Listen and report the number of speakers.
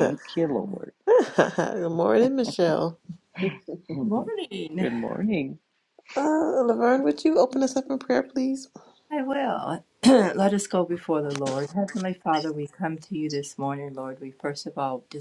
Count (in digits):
3